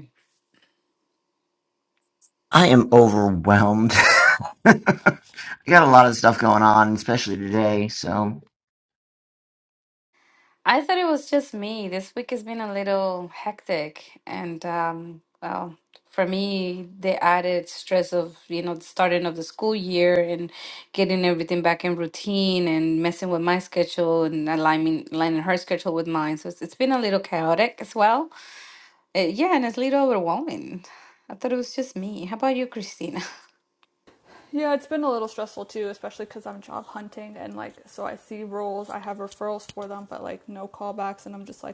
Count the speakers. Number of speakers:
3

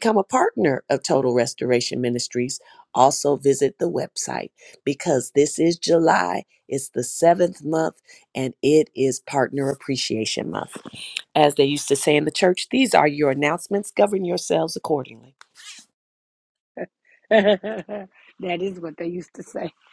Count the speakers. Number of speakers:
2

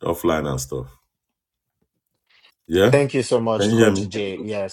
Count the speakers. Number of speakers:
2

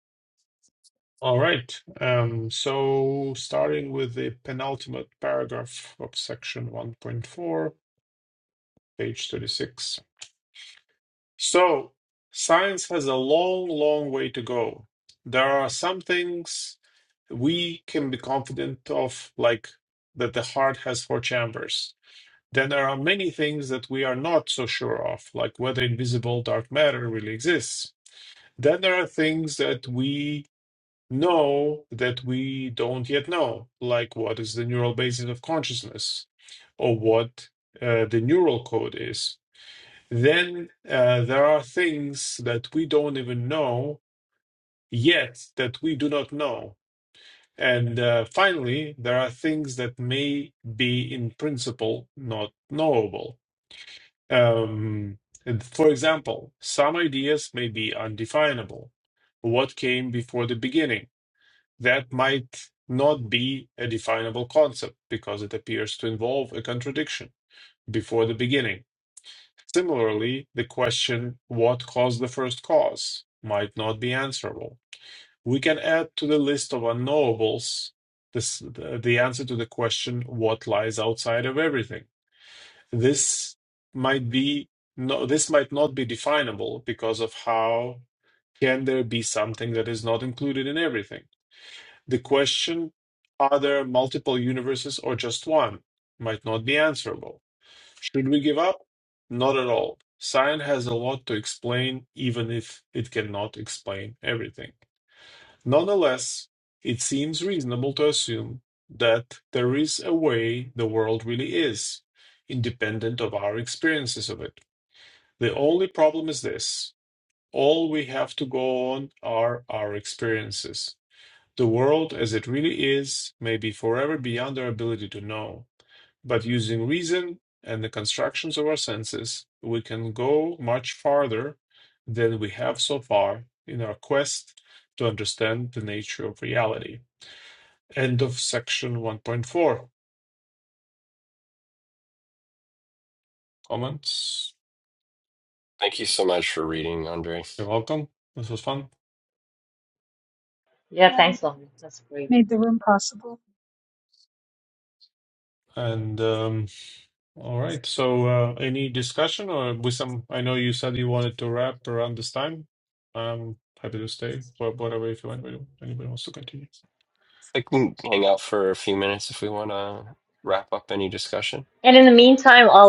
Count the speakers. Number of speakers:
4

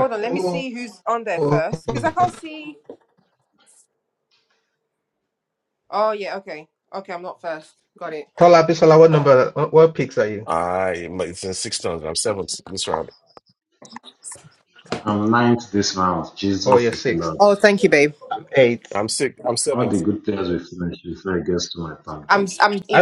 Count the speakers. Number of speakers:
4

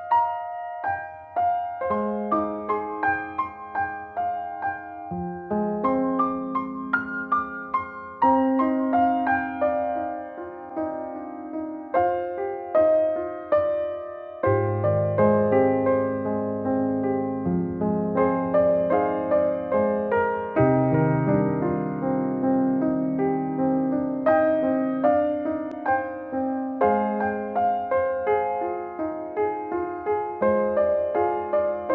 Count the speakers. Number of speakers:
0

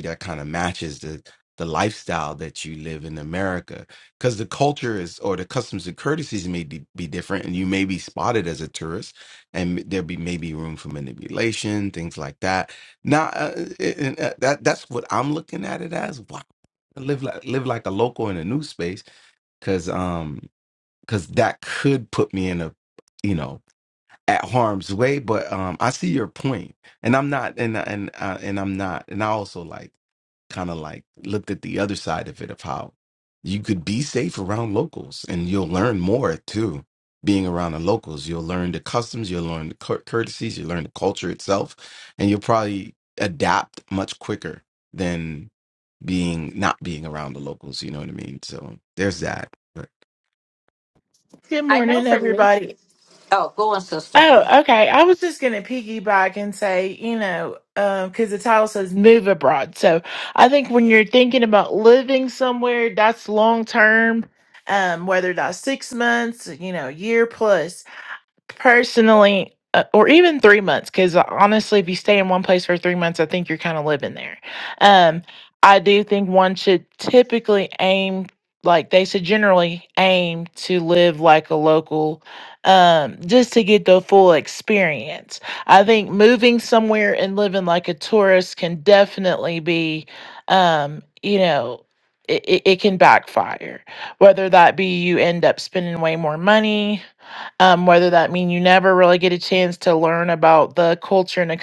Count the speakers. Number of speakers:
3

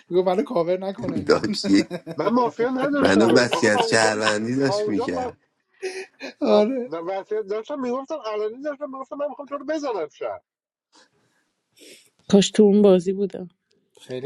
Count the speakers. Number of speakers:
4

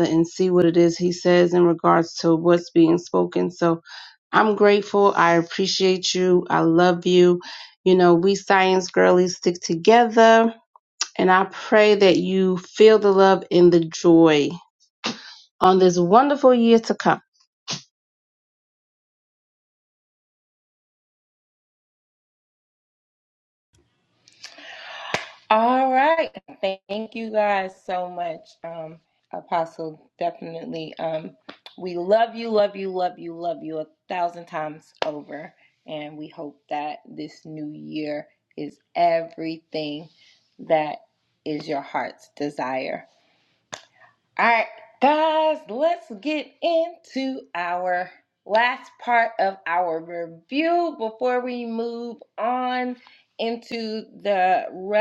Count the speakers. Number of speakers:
2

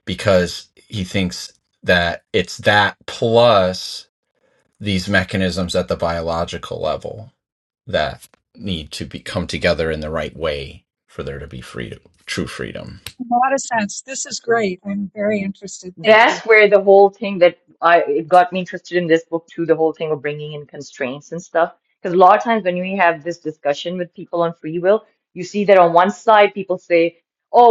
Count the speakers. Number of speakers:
3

